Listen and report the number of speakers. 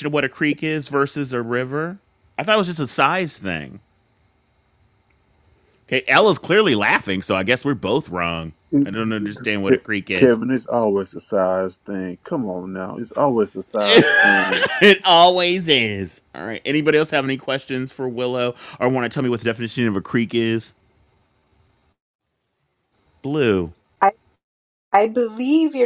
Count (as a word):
three